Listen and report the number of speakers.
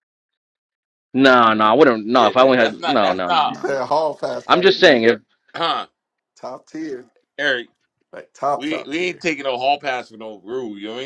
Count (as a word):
three